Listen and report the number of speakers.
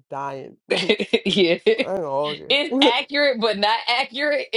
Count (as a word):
two